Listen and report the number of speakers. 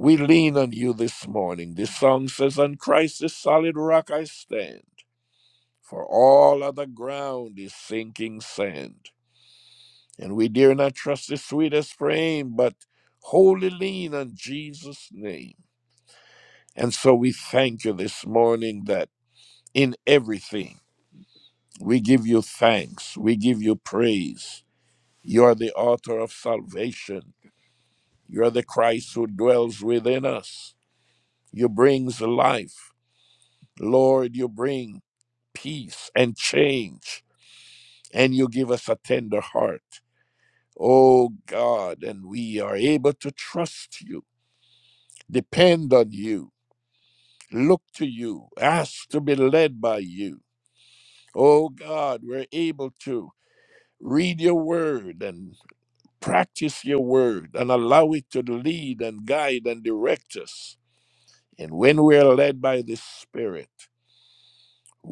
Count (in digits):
1